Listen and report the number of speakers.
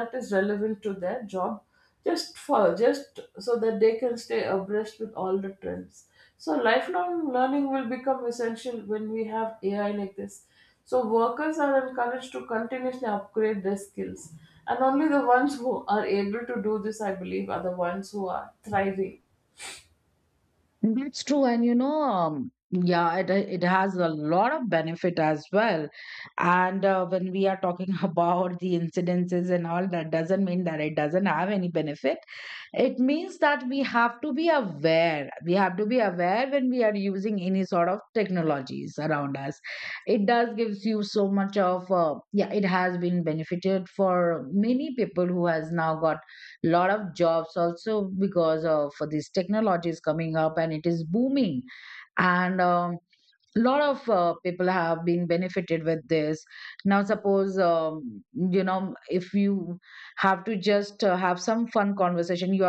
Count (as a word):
two